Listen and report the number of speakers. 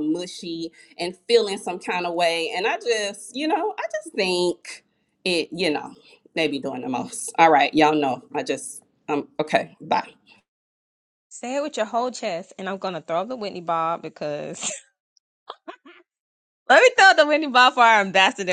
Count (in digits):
2